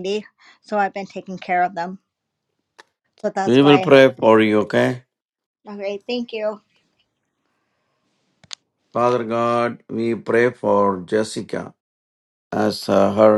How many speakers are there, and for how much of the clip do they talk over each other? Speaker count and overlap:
2, about 4%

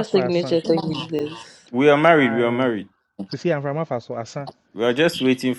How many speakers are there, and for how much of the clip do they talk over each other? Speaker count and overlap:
3, about 20%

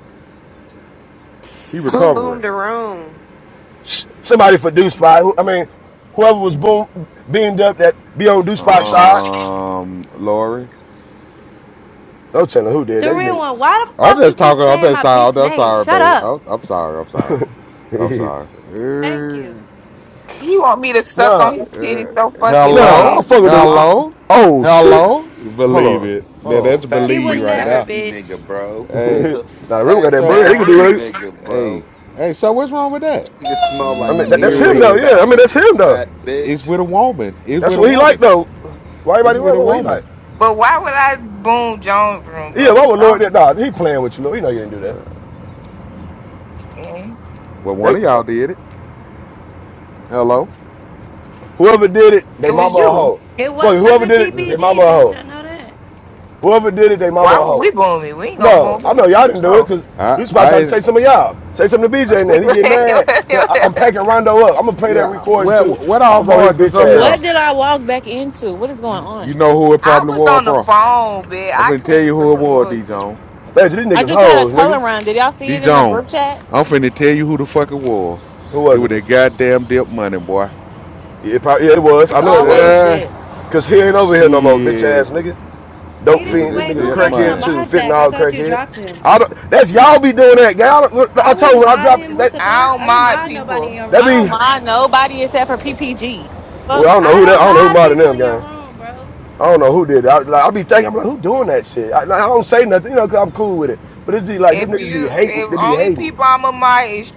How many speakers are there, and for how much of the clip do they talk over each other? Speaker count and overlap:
7, about 35%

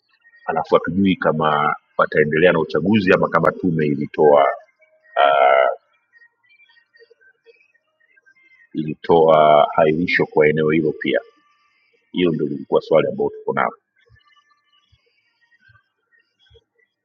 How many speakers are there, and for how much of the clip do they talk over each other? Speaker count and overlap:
1, no overlap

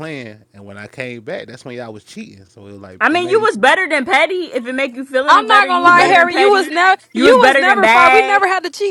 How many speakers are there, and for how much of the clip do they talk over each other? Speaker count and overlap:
3, about 35%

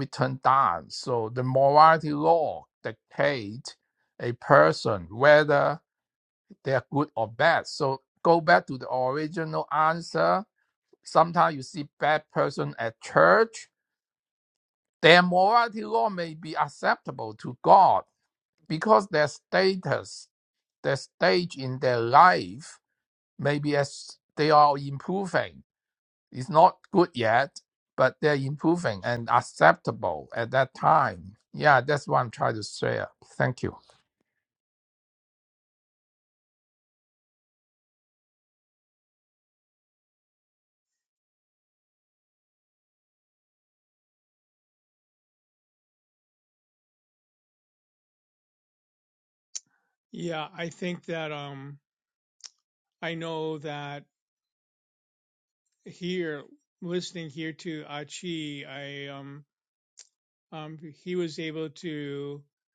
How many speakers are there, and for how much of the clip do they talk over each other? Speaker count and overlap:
2, no overlap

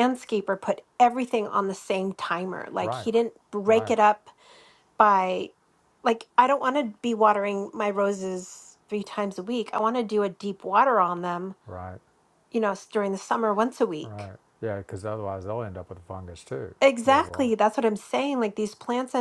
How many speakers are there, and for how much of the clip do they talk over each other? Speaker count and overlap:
2, about 6%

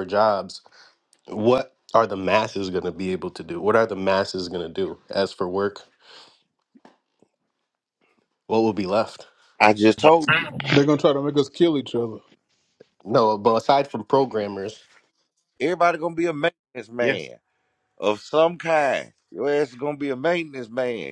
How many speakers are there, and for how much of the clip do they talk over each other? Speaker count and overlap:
3, about 1%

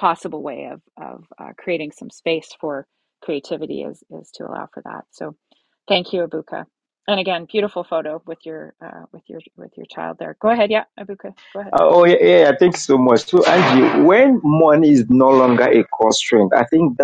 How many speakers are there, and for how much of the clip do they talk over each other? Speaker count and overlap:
2, no overlap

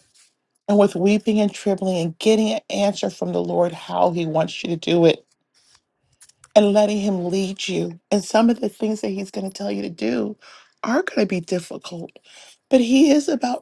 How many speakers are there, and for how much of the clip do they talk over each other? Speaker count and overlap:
1, no overlap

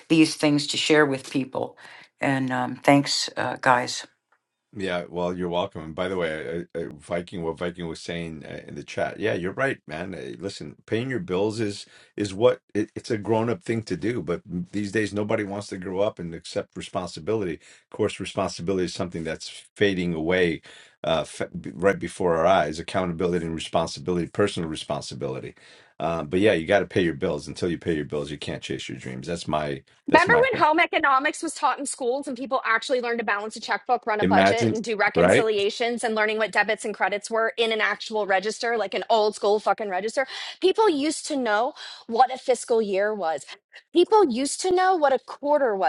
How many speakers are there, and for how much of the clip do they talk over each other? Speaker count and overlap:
3, about 3%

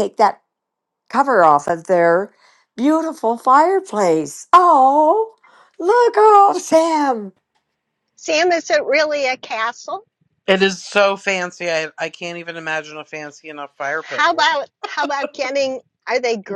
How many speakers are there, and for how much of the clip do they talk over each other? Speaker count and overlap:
3, about 2%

